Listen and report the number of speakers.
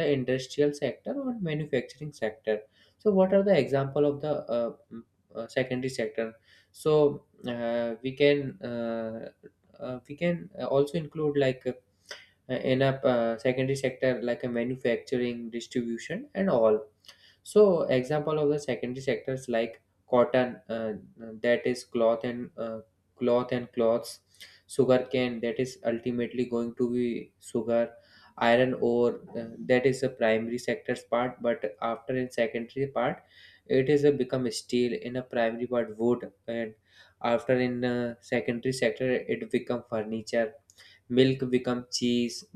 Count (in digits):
1